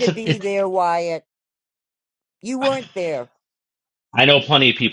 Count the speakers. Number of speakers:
2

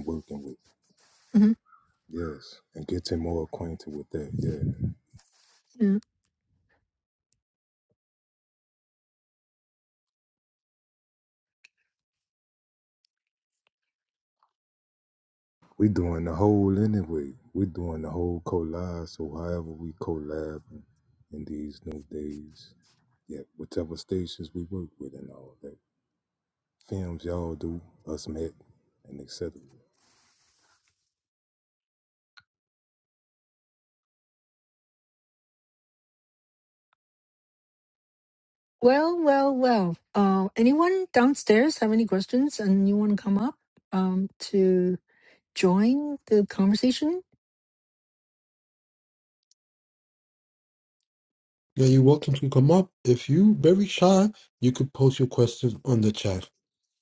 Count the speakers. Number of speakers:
3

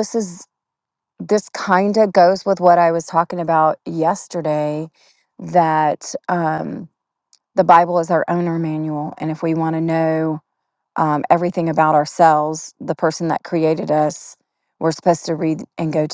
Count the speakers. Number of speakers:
1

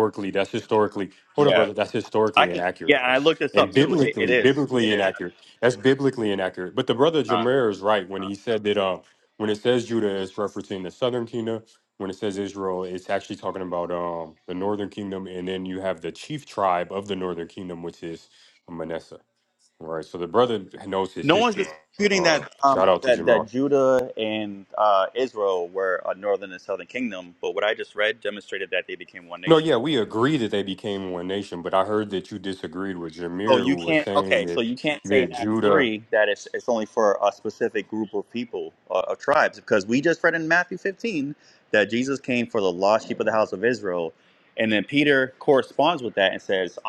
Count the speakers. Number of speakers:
2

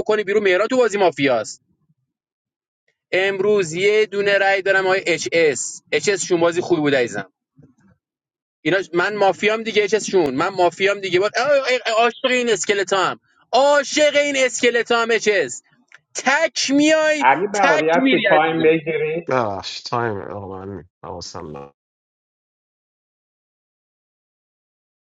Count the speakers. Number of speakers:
3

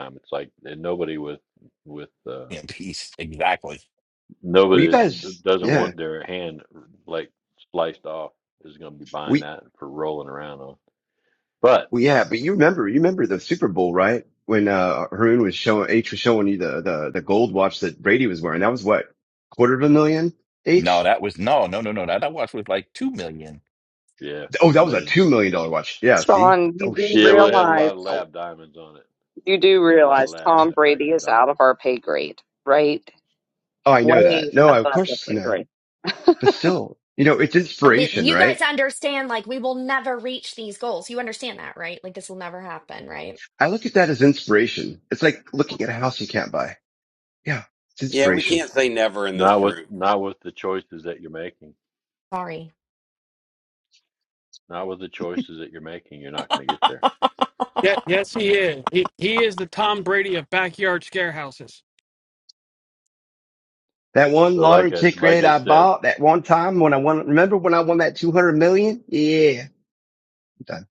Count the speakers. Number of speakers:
7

